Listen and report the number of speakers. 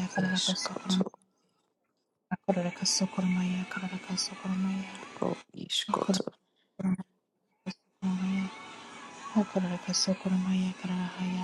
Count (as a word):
two